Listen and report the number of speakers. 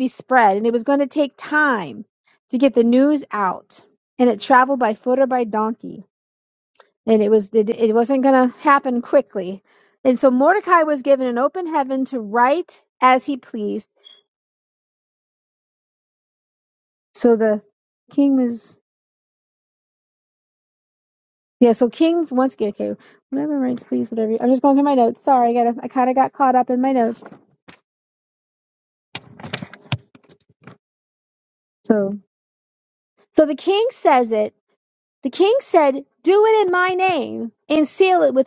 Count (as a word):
one